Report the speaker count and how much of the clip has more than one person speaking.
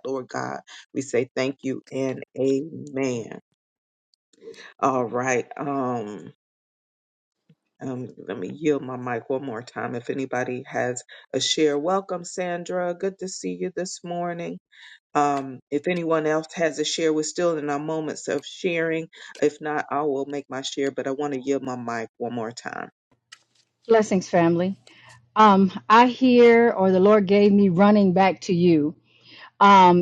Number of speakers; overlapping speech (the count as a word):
two, no overlap